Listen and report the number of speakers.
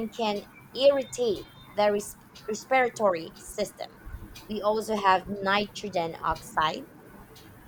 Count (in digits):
1